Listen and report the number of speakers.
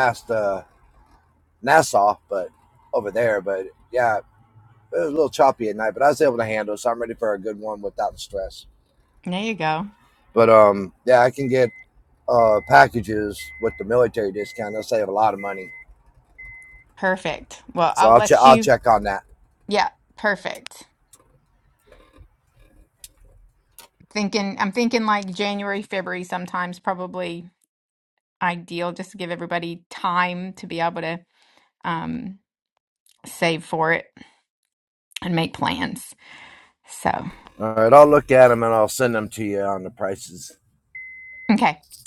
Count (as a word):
two